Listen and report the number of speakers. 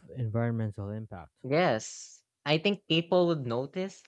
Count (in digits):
2